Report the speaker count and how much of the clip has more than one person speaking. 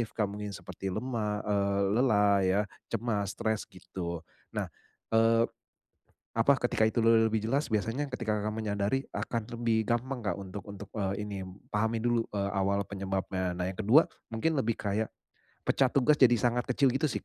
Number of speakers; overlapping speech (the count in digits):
1, no overlap